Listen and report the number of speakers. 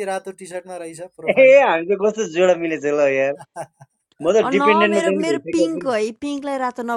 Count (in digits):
3